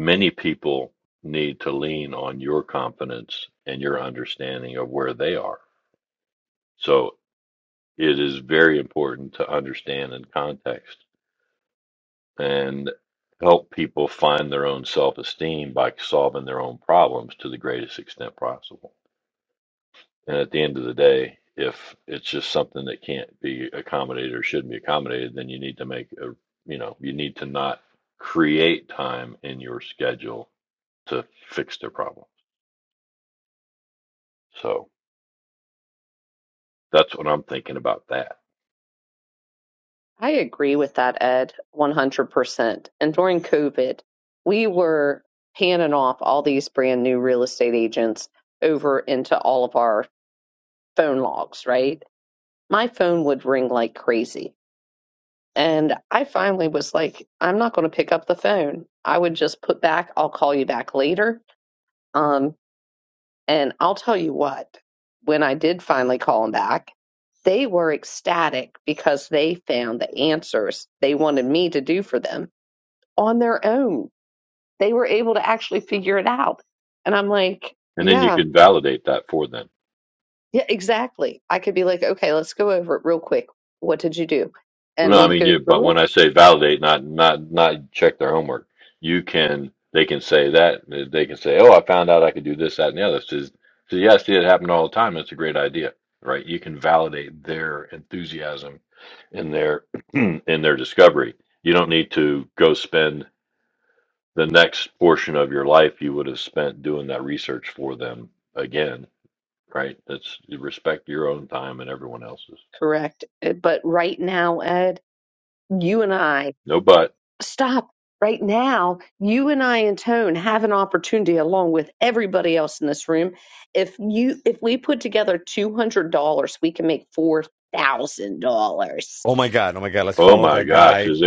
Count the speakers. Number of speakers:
three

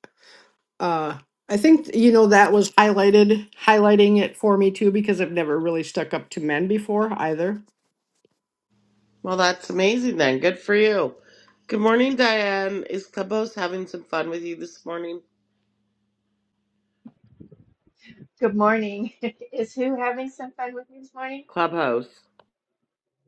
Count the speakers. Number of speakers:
three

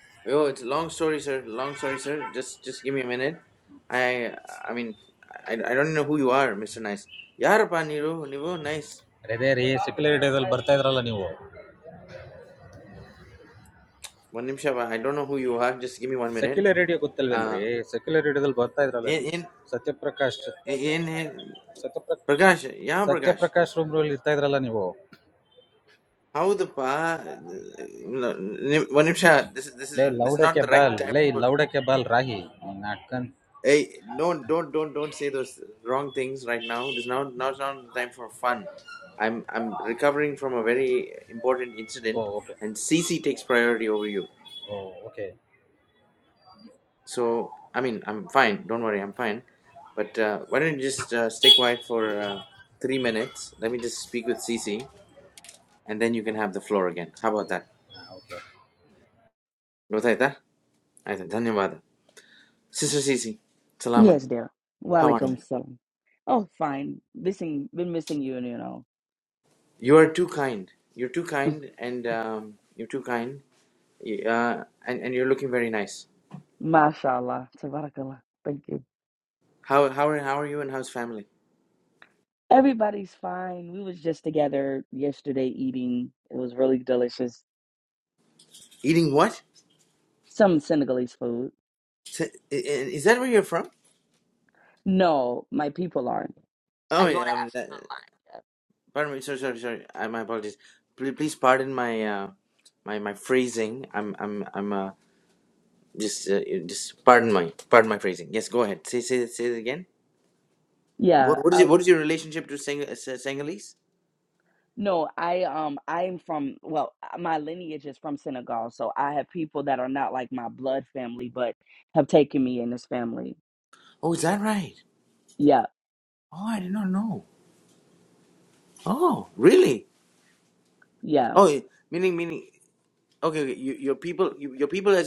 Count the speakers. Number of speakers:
three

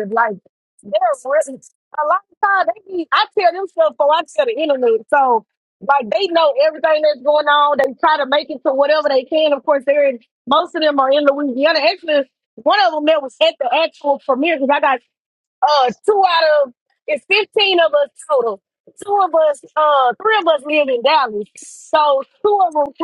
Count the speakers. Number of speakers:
one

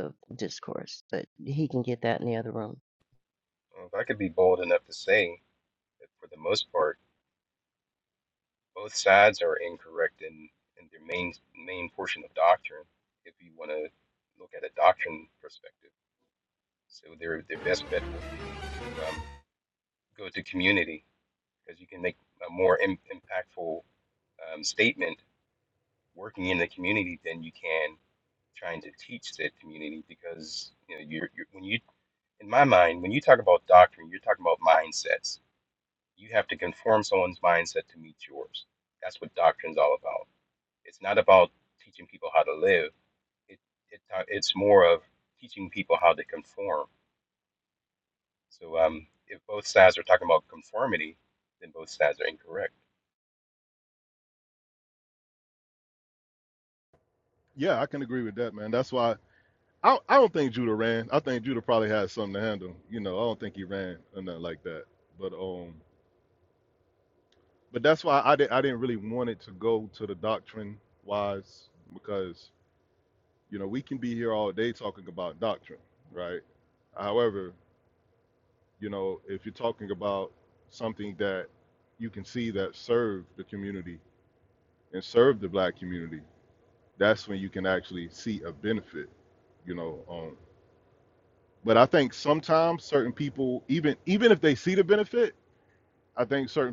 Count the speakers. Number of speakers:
three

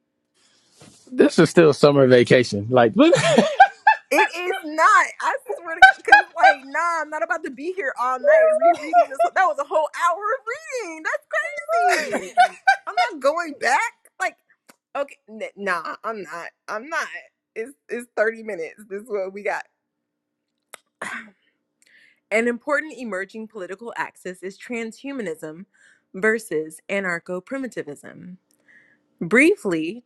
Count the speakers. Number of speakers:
two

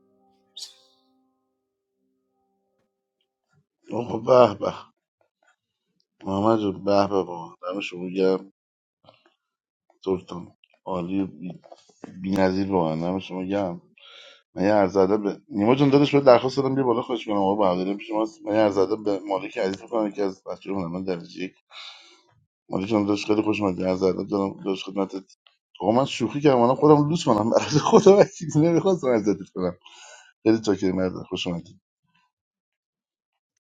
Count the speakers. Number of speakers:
one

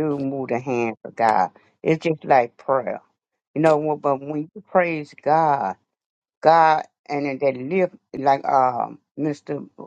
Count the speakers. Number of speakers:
one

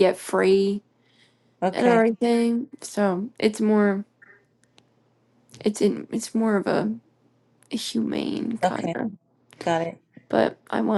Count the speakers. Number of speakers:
two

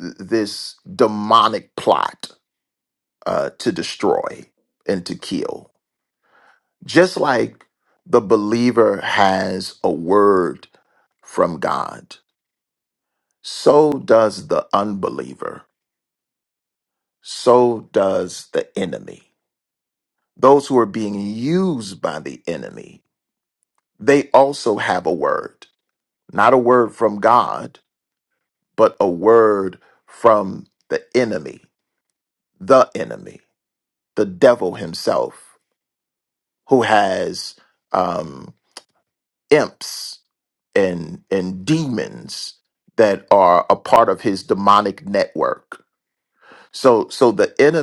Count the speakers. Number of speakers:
one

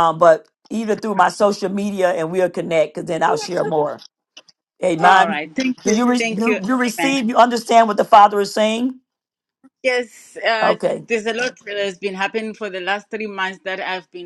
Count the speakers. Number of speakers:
two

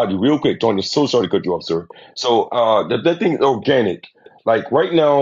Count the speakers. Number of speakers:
one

